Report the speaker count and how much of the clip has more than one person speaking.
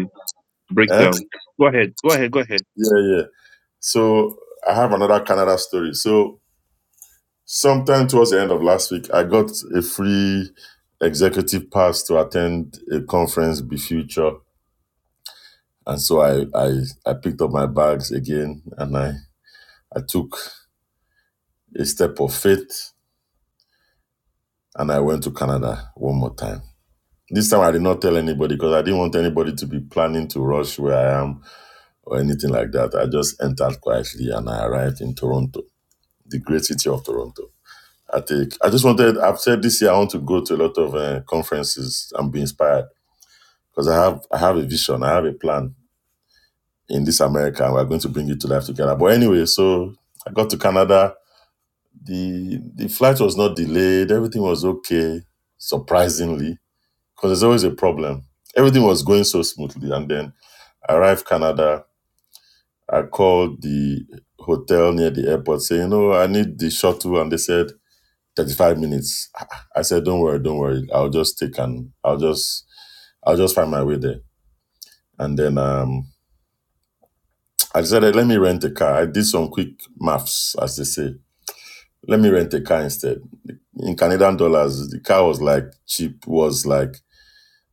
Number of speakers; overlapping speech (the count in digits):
2, under 1%